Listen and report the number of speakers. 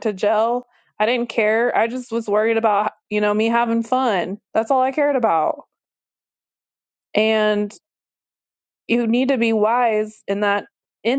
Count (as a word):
one